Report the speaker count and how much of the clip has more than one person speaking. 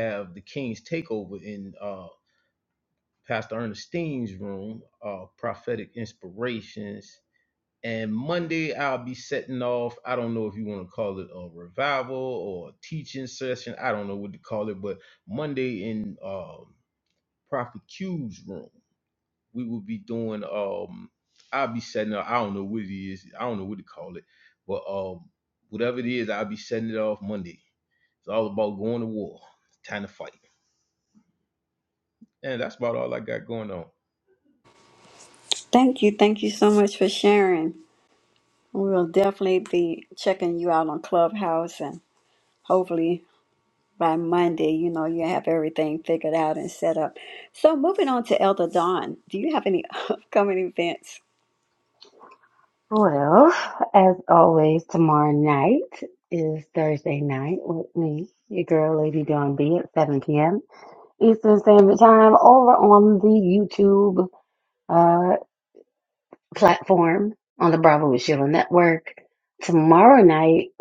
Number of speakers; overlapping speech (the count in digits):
3, no overlap